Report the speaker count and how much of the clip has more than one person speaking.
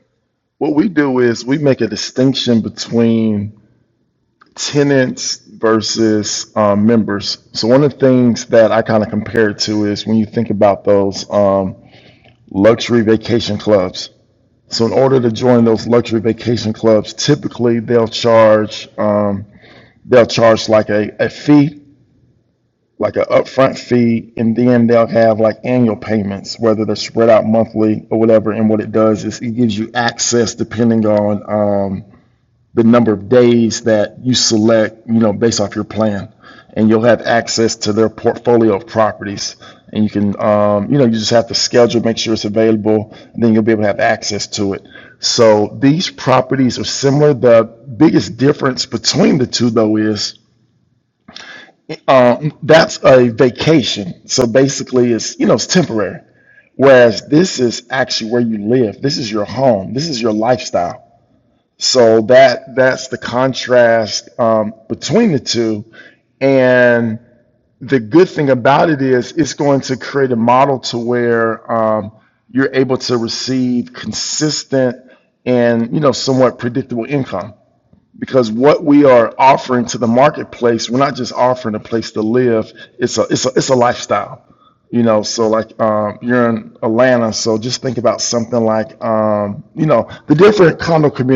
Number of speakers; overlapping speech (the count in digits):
1, no overlap